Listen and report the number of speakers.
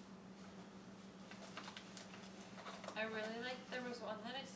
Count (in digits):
1